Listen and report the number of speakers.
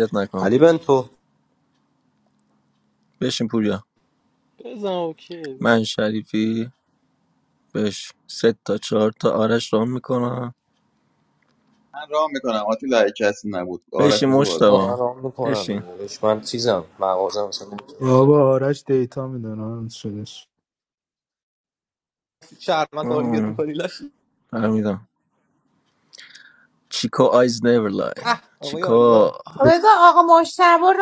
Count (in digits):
6